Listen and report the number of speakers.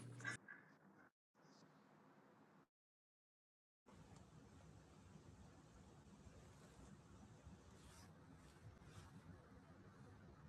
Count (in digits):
0